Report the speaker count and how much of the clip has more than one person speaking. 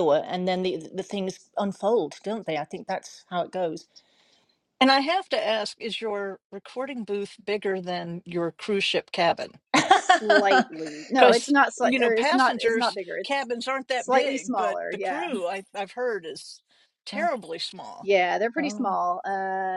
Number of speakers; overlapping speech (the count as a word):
three, about 19%